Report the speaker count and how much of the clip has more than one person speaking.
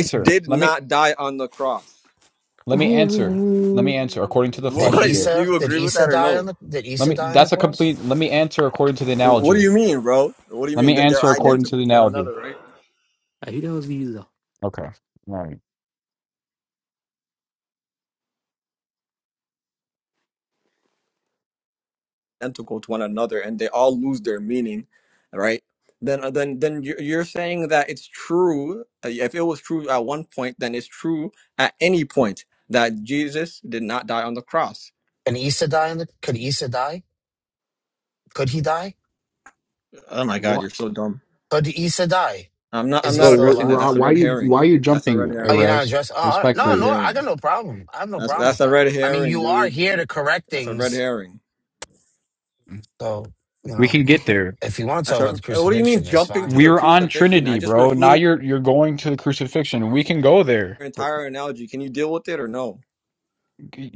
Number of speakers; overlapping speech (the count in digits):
4, about 24%